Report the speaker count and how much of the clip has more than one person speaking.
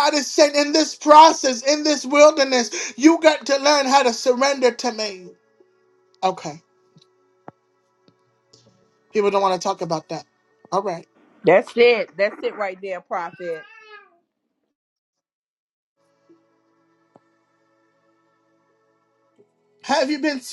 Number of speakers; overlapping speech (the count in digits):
2, no overlap